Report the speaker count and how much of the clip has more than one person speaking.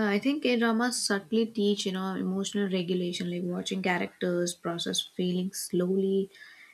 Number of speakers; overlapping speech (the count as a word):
one, no overlap